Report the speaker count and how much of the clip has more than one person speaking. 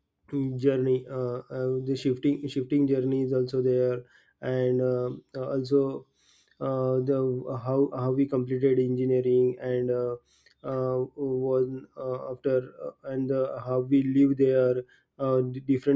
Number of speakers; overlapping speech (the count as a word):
one, no overlap